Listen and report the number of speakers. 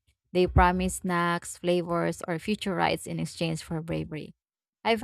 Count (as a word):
one